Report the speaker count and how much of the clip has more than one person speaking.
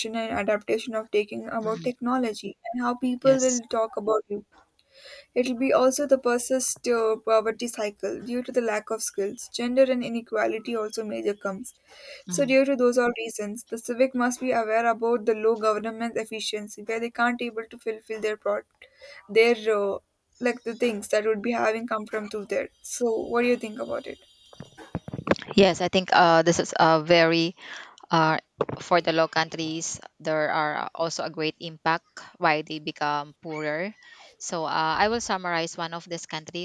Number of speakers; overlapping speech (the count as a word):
two, about 1%